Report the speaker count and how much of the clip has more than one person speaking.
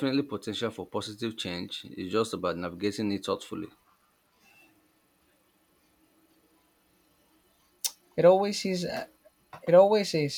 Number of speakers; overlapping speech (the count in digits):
2, no overlap